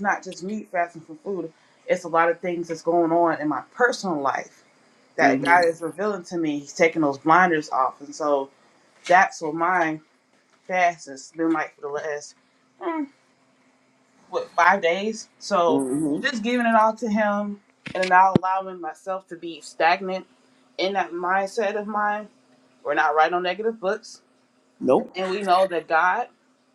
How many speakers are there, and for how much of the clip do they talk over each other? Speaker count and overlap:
two, about 2%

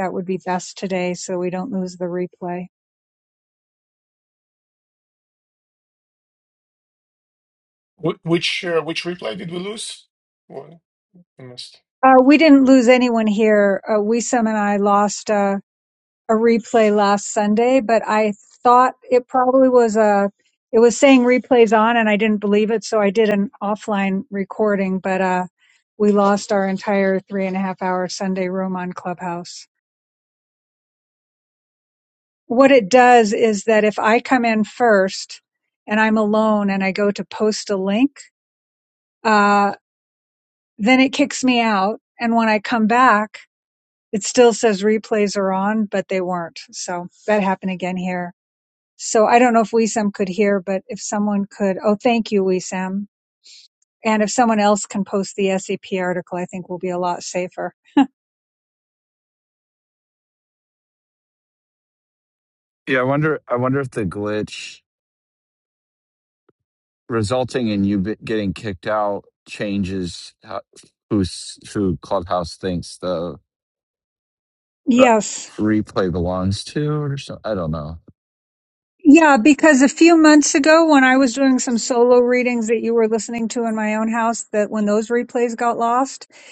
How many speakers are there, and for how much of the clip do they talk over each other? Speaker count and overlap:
three, under 1%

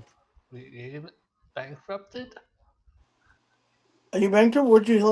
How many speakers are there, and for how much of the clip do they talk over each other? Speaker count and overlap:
two, no overlap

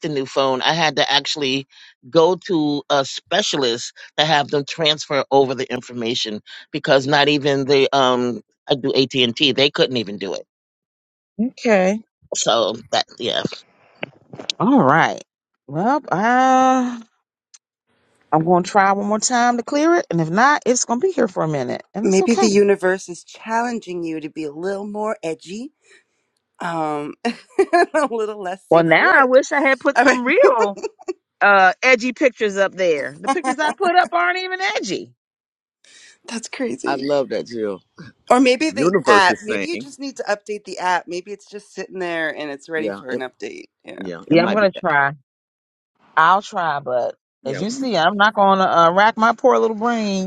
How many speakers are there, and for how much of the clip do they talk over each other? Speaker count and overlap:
four, about 8%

